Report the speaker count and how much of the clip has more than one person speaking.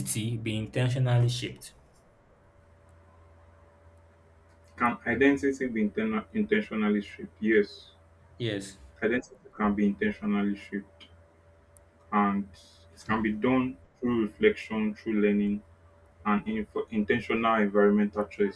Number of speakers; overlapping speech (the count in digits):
2, no overlap